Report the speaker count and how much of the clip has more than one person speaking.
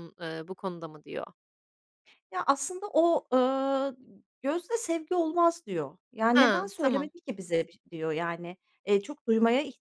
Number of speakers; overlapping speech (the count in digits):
2, about 7%